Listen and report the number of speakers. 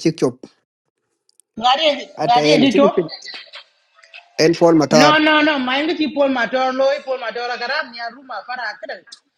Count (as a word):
two